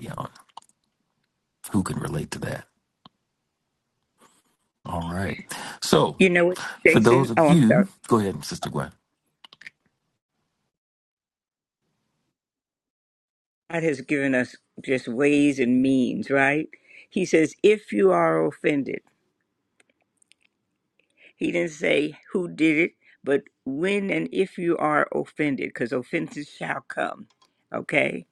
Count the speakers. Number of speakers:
2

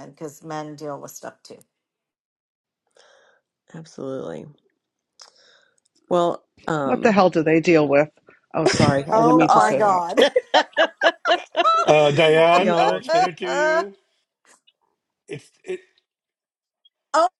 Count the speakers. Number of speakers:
4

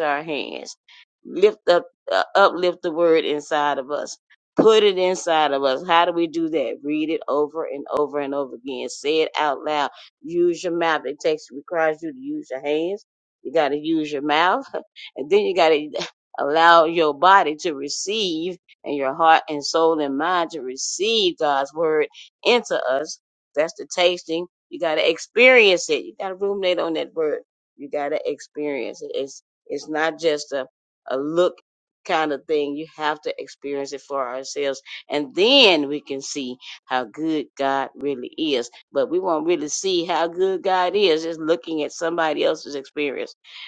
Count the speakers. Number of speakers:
1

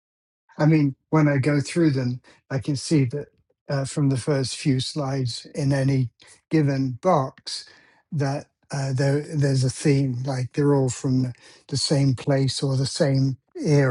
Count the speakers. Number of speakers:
1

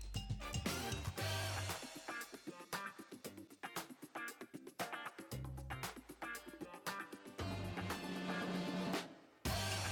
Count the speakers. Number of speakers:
0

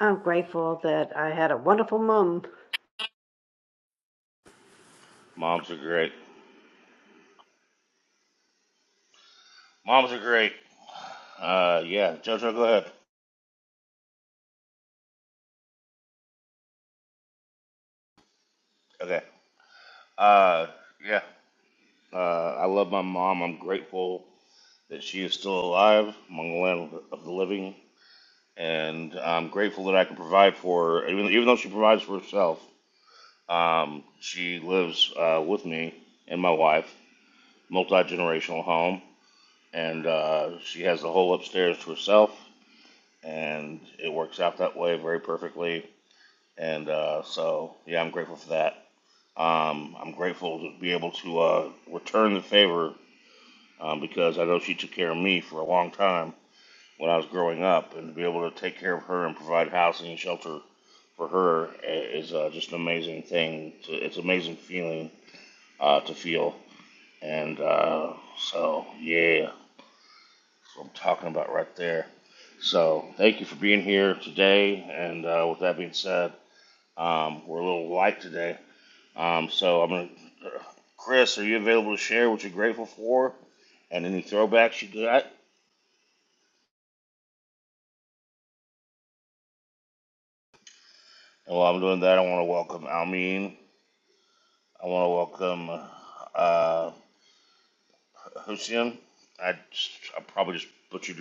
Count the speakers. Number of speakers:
2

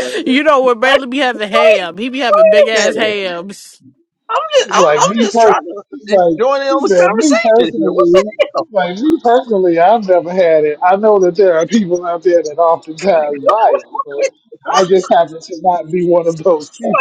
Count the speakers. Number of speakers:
3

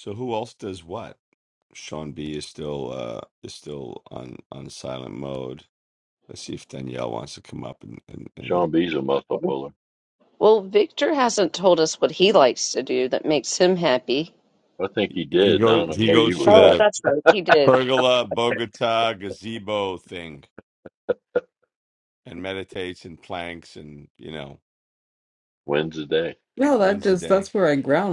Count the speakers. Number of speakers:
4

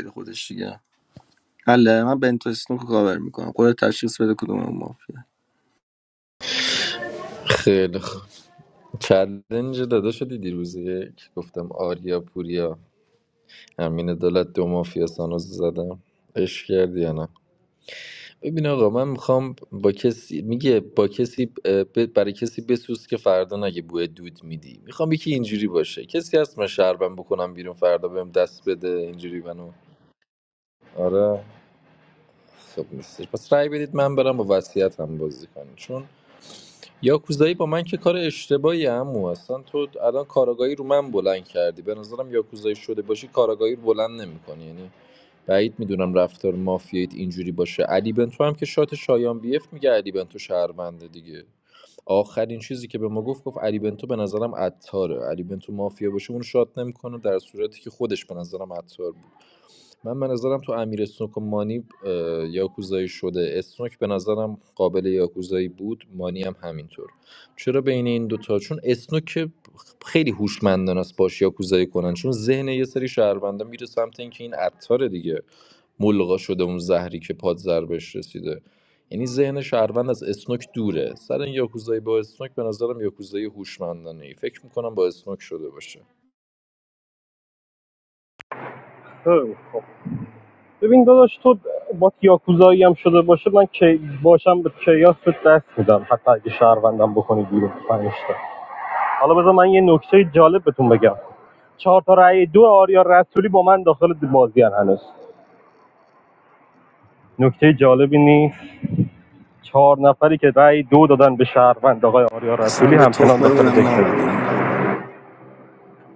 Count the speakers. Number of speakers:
3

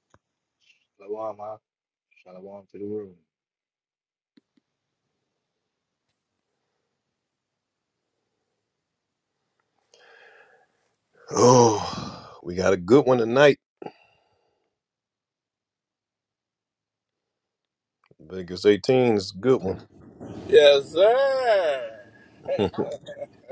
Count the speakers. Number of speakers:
3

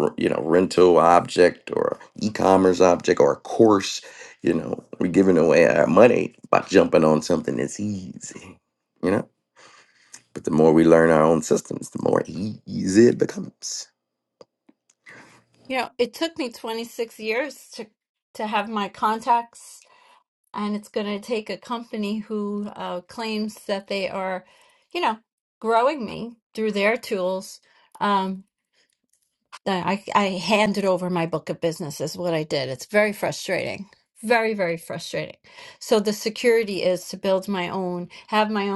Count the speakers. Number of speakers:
2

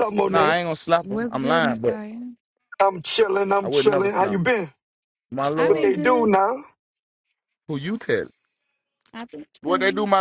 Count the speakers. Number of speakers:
3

